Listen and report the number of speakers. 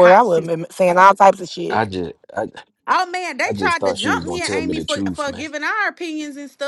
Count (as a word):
three